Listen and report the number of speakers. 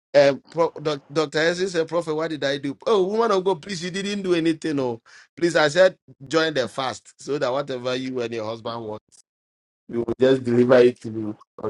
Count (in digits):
1